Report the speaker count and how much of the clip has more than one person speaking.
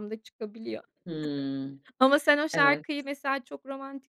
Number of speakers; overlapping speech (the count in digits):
2, about 7%